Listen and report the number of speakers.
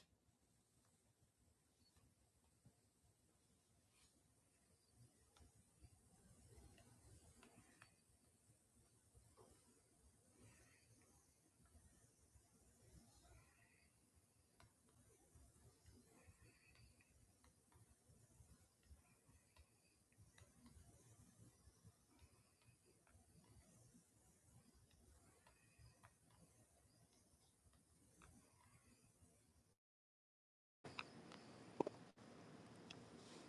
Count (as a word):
zero